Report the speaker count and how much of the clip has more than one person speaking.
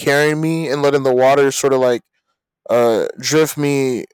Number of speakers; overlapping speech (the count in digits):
1, no overlap